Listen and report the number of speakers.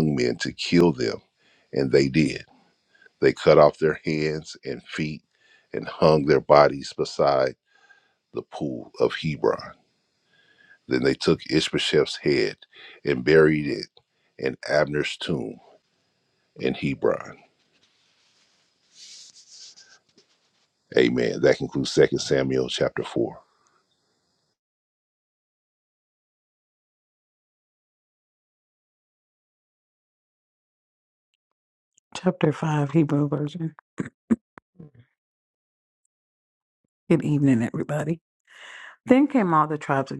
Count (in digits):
2